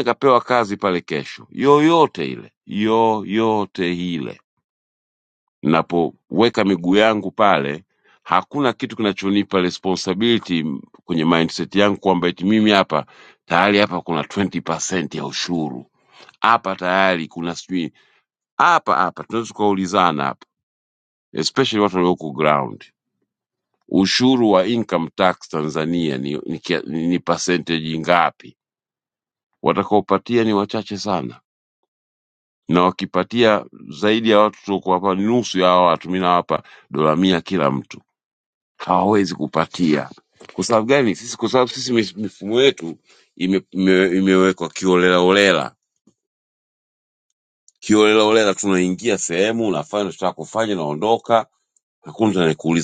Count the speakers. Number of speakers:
1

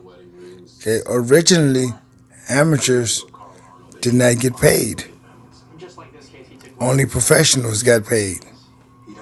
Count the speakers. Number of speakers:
1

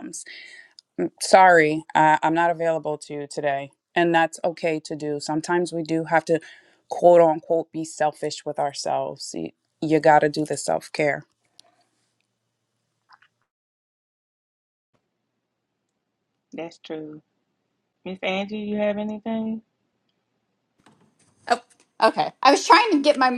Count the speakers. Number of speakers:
3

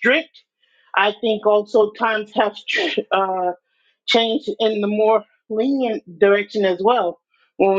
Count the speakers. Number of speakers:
1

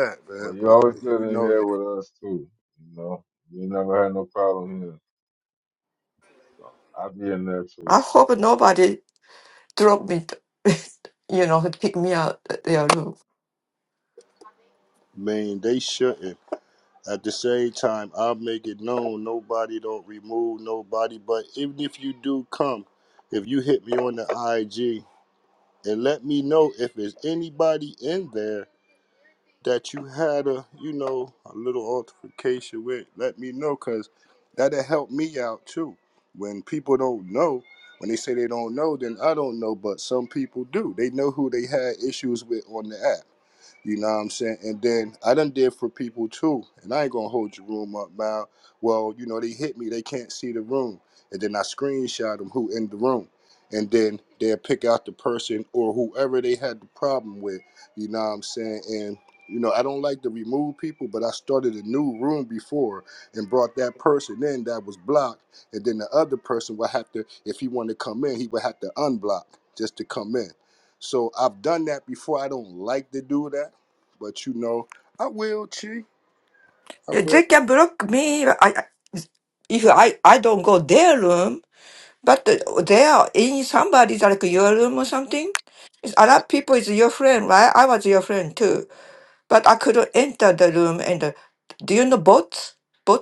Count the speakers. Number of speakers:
3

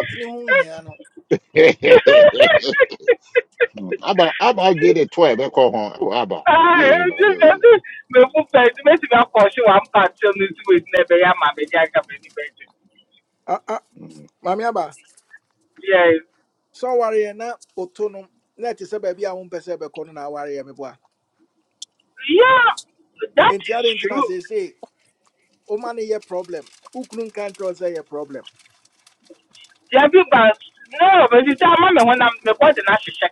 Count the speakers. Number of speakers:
3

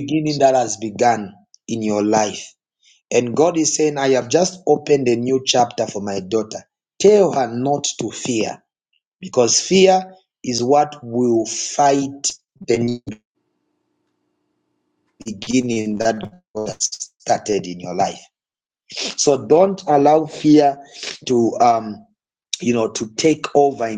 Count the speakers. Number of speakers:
1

